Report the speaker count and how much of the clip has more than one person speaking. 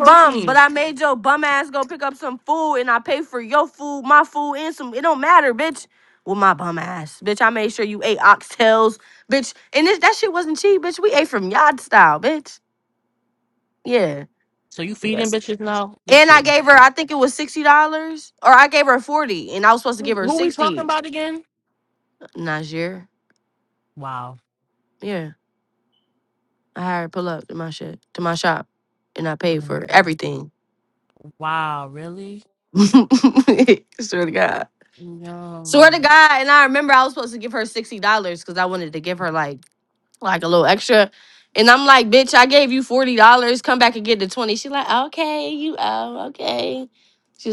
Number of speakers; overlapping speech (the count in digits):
2, about 6%